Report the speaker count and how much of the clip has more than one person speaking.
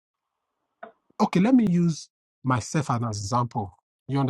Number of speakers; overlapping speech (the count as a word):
one, no overlap